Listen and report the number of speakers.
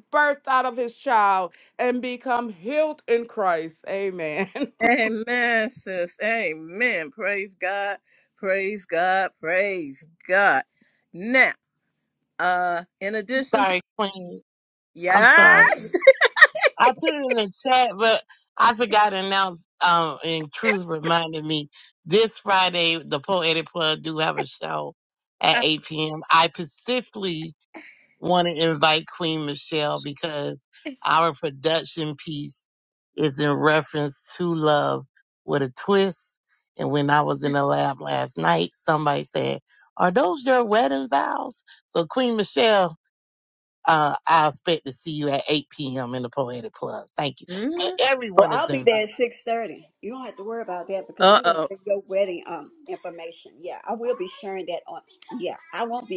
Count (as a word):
four